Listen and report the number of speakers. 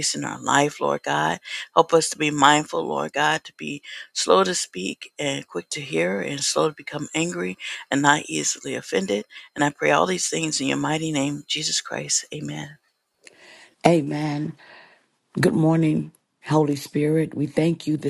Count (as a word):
two